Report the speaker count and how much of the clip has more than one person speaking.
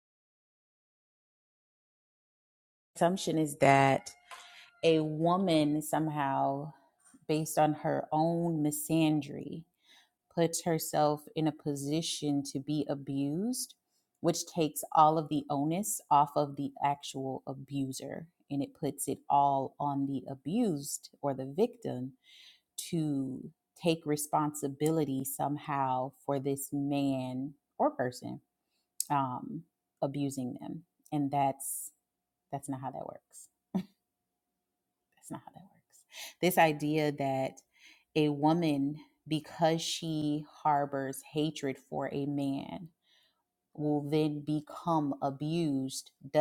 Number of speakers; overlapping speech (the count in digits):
1, no overlap